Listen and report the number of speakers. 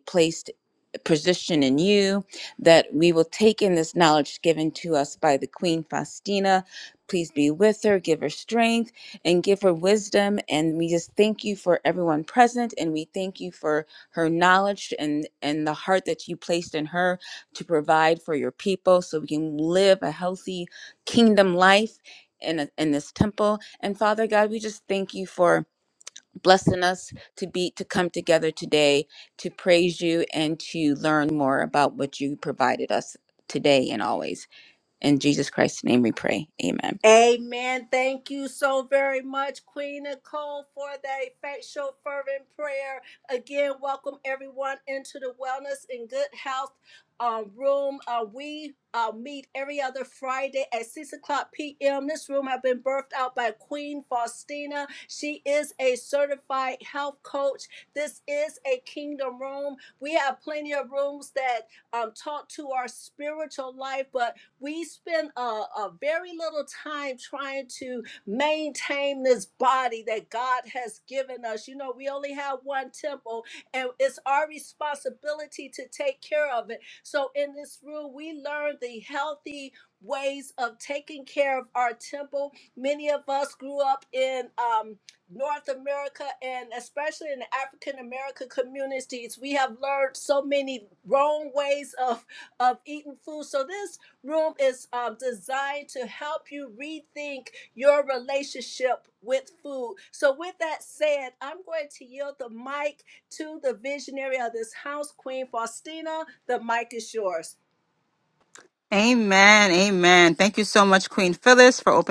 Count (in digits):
3